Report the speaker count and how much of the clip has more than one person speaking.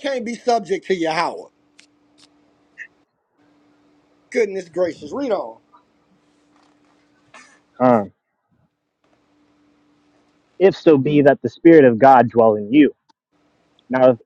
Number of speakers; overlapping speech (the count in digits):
2, no overlap